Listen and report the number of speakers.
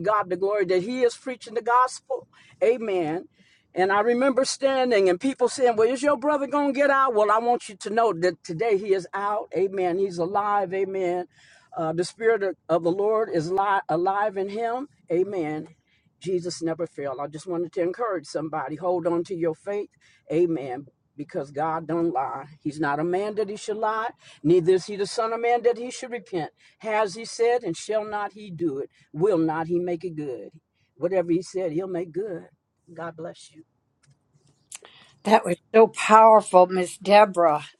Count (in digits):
2